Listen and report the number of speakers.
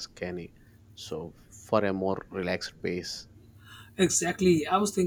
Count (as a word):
two